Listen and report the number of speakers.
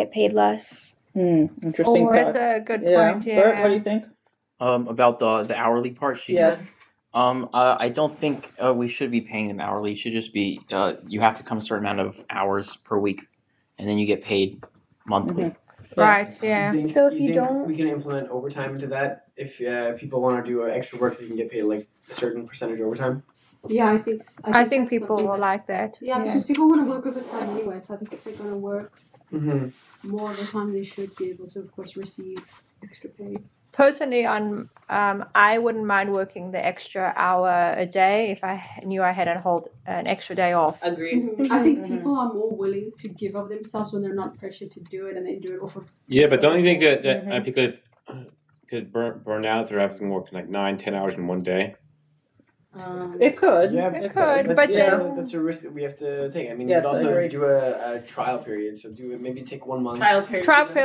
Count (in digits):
8